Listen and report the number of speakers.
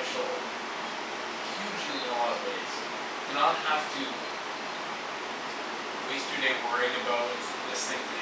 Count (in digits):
1